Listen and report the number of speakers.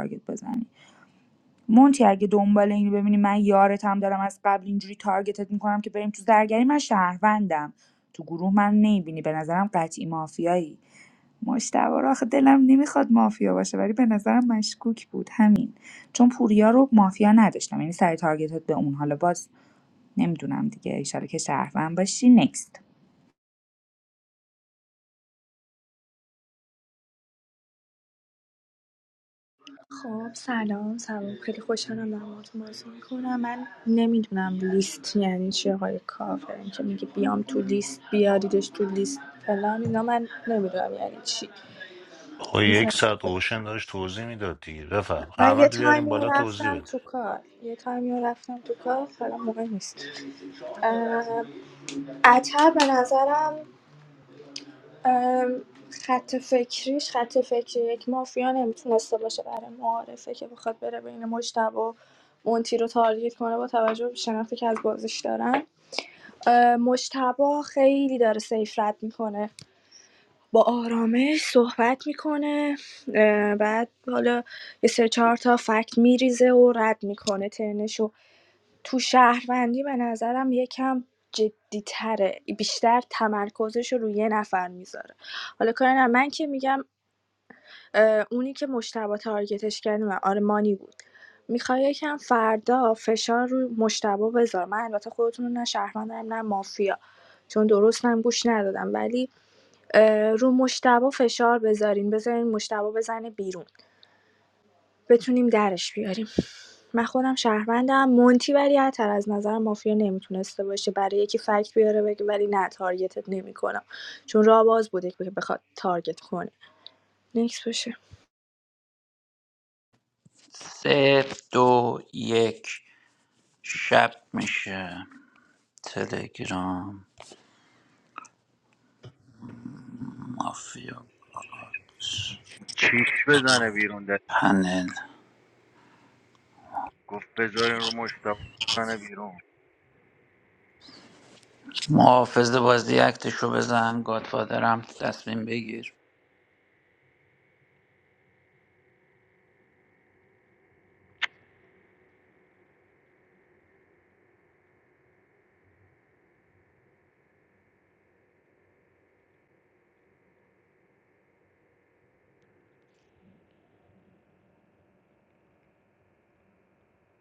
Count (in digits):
5